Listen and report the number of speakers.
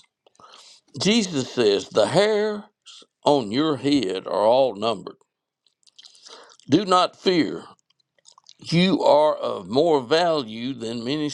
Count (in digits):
1